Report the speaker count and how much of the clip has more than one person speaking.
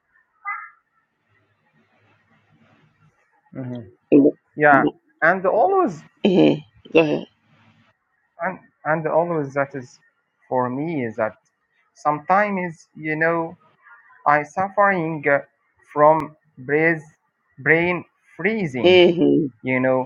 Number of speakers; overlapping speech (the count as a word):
two, under 1%